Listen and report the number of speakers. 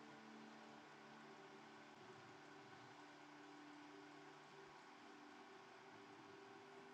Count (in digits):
0